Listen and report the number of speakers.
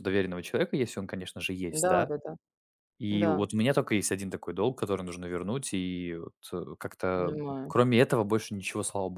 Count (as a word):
two